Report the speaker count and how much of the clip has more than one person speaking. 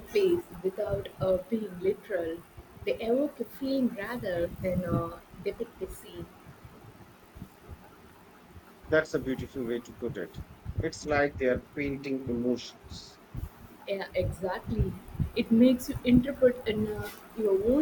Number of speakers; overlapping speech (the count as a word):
two, no overlap